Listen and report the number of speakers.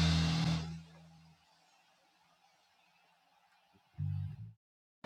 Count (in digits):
0